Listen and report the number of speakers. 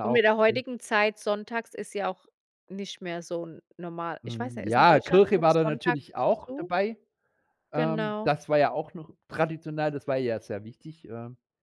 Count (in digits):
2